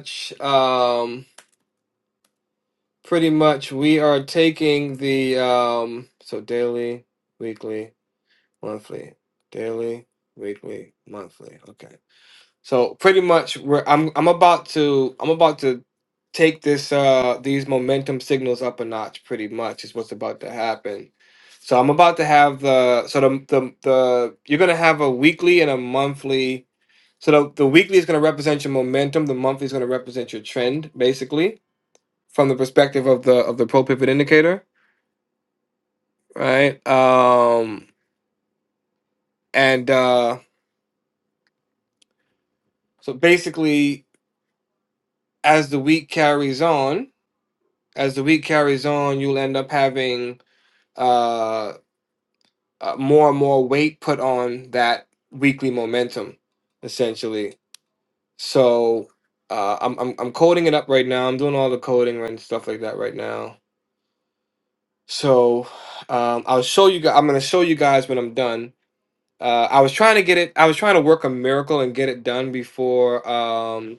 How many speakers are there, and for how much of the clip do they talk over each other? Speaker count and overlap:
one, no overlap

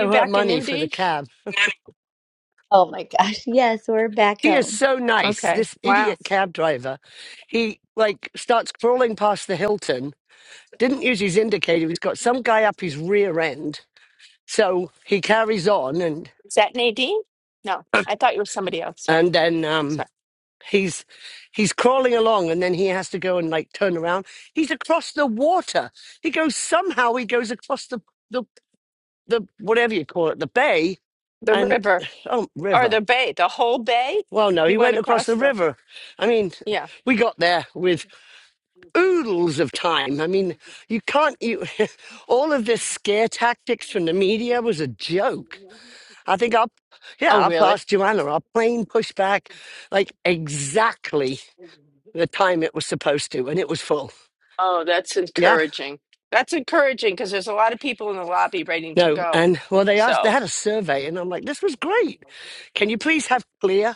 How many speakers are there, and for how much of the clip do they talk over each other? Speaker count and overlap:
three, about 8%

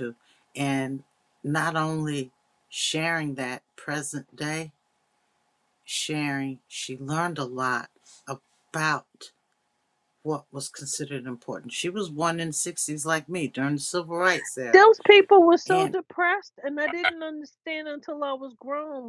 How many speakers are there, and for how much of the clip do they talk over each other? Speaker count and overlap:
two, about 2%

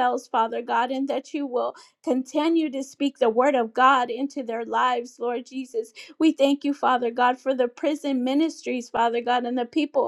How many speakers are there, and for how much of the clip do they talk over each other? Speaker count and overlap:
one, no overlap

